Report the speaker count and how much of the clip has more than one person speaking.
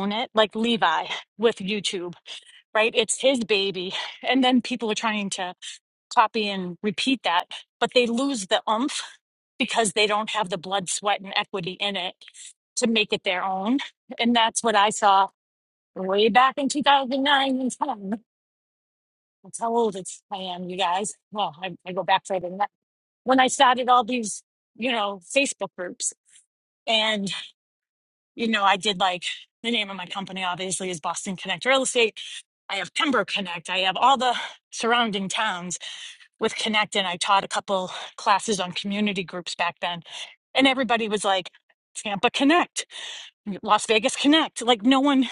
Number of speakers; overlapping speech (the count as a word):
one, no overlap